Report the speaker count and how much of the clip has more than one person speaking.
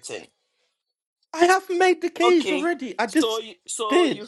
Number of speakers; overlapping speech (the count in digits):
2, about 21%